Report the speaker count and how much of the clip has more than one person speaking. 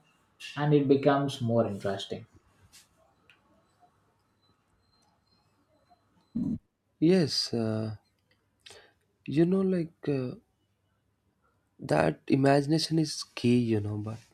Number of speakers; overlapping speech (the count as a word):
two, no overlap